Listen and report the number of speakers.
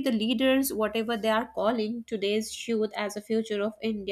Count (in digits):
1